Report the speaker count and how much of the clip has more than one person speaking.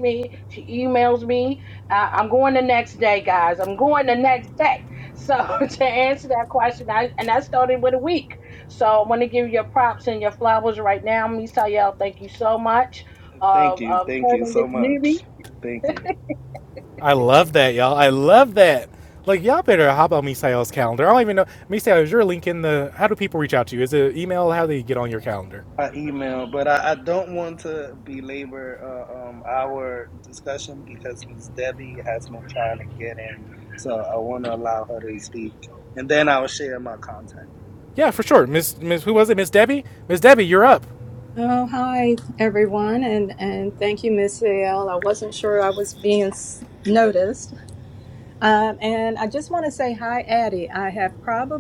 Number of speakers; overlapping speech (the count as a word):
four, about 3%